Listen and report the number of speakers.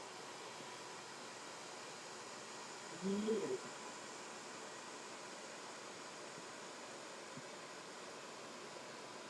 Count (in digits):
0